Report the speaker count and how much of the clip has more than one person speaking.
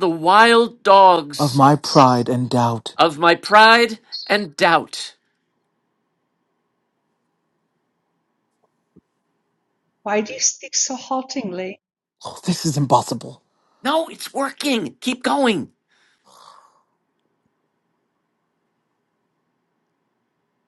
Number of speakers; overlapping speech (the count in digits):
3, no overlap